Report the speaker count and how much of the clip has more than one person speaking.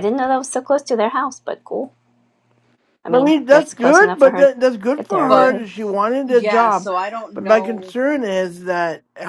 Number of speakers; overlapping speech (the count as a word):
three, about 35%